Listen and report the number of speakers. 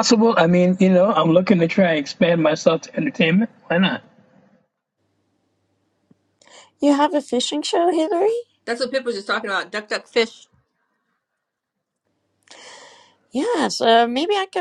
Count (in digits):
3